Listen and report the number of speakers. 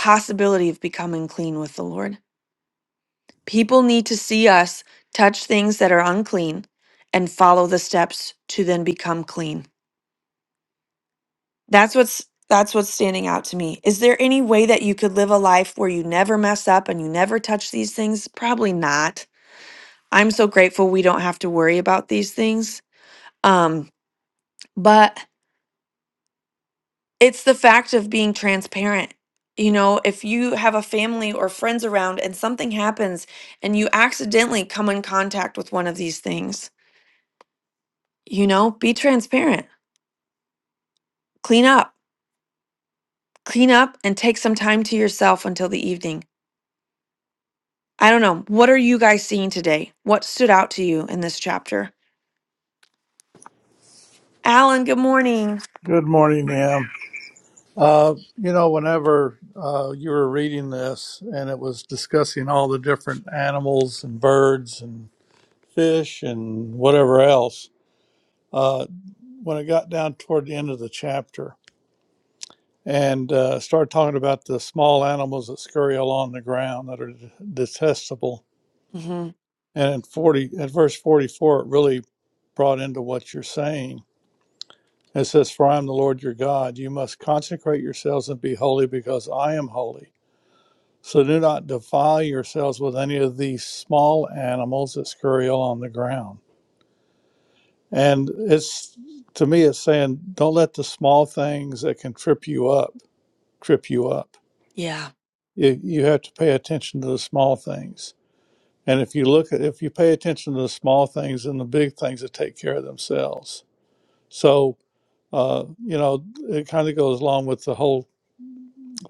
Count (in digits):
2